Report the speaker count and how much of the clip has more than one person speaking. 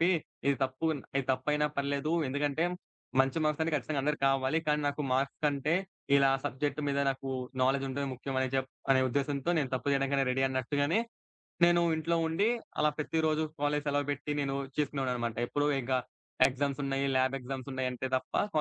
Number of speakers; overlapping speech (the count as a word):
one, no overlap